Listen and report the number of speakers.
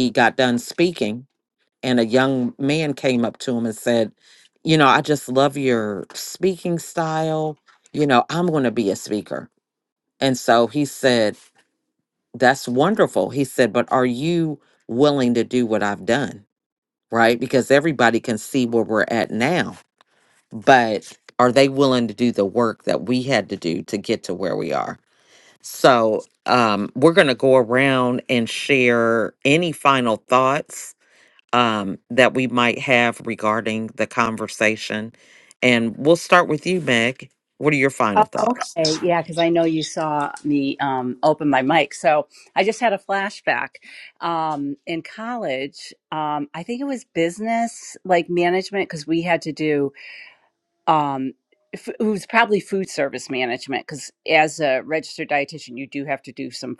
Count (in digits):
2